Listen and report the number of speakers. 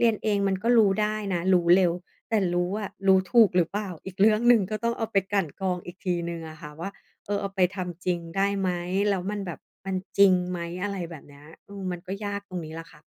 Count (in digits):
1